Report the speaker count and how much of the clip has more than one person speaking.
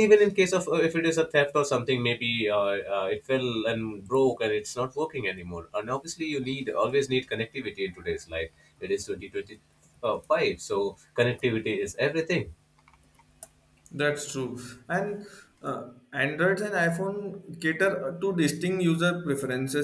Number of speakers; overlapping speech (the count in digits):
2, no overlap